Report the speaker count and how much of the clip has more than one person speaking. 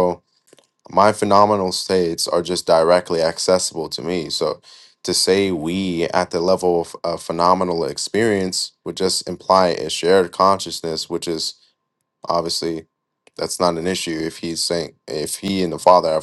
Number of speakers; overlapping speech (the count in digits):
1, no overlap